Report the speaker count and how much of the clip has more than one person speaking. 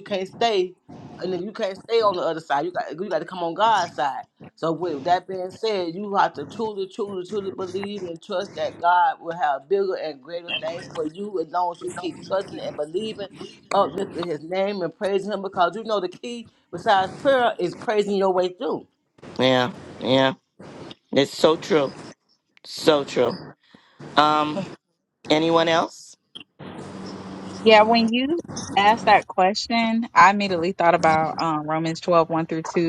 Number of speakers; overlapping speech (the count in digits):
3, no overlap